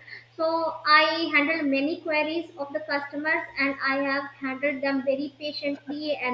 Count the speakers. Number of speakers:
1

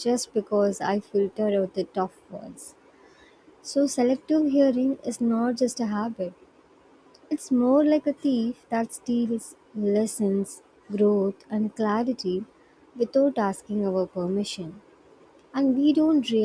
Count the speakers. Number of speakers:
1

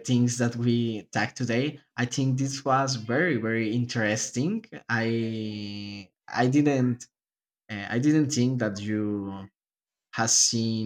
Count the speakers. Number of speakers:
1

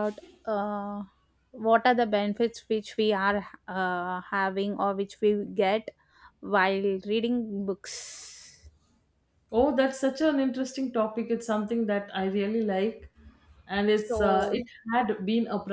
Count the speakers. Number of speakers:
2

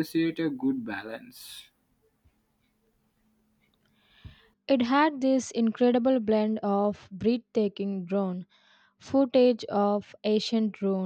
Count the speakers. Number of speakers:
2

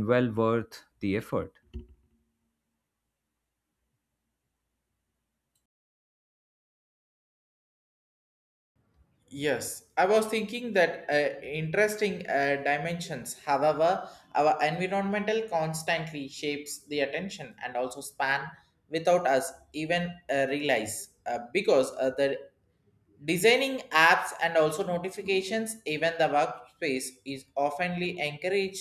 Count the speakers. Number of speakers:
2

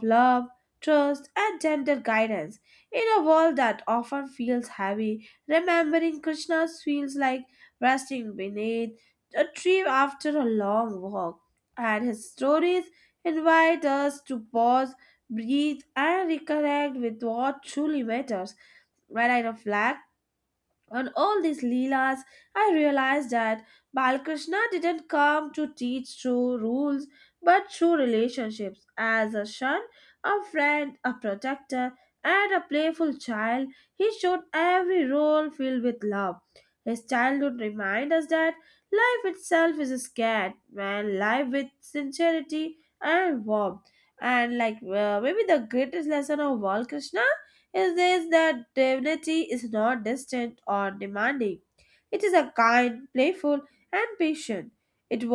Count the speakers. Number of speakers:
1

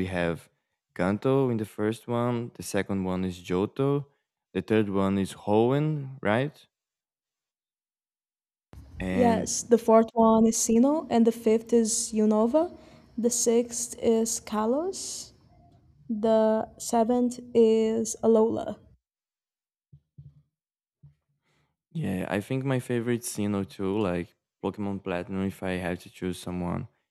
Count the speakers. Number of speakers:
2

